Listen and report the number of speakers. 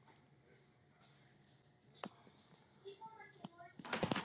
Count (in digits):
0